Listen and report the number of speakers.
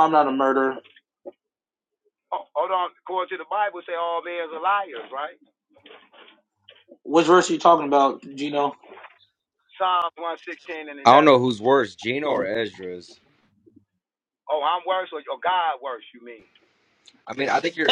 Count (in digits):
3